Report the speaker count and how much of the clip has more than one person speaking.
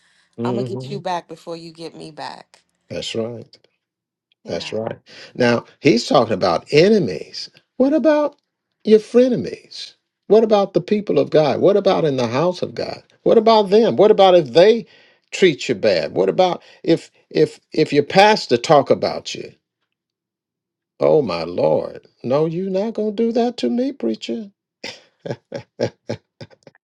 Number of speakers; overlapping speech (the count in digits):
2, about 3%